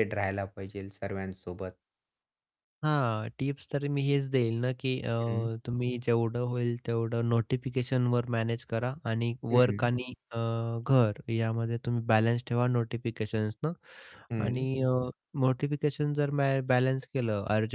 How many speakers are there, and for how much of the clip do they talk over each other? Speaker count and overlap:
2, about 3%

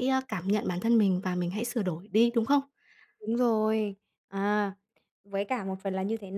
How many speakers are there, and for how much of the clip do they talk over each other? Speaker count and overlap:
2, no overlap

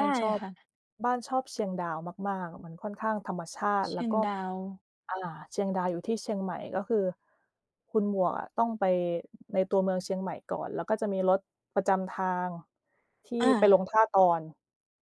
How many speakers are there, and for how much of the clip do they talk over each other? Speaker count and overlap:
2, about 6%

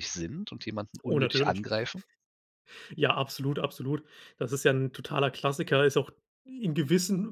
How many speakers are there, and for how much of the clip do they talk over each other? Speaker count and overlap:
2, about 8%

